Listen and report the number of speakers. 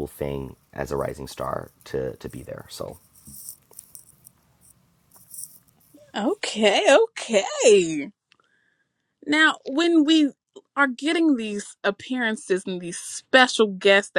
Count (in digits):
2